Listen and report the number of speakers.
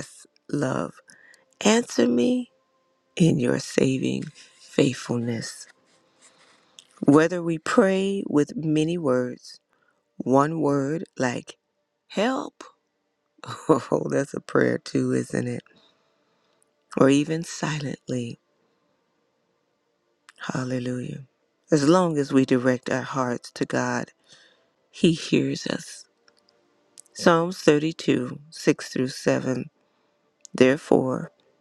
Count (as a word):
one